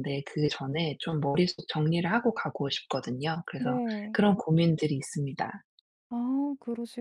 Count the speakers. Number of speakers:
2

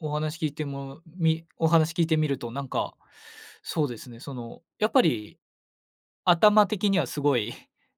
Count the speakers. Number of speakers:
1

